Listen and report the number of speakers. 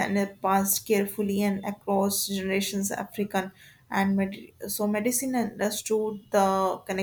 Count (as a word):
one